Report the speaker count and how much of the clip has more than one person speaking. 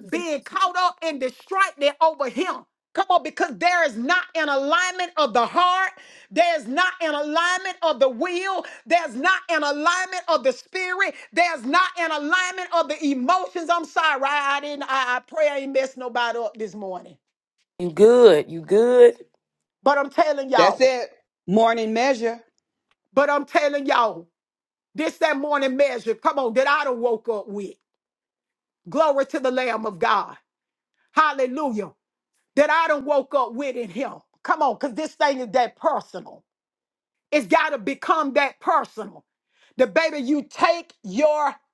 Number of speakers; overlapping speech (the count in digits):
3, about 1%